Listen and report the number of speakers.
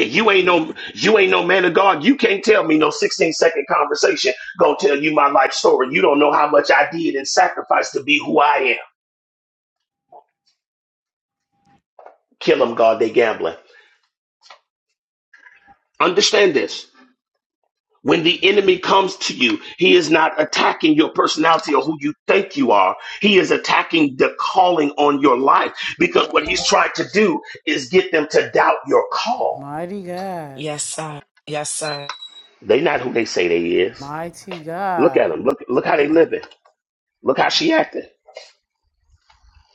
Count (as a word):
three